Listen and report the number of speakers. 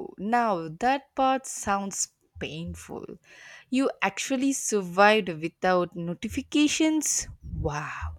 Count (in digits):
1